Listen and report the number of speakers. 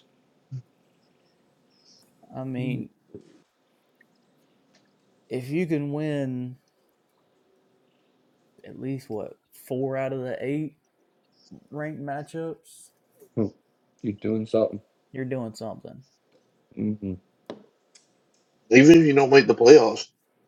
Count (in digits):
3